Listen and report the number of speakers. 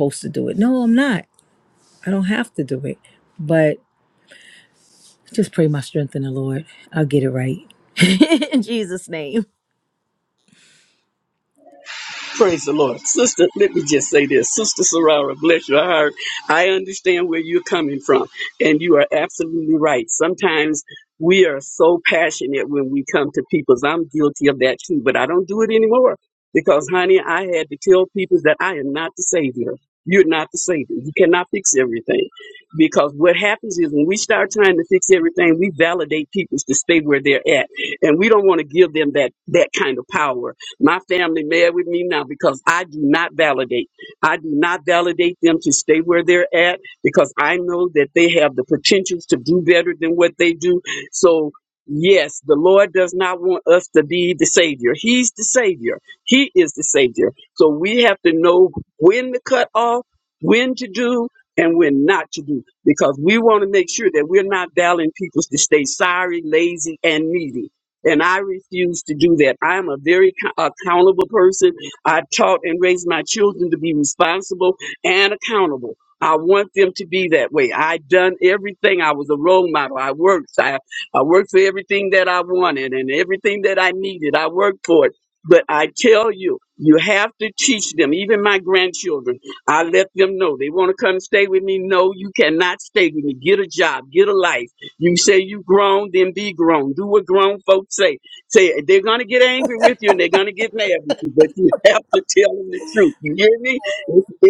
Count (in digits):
2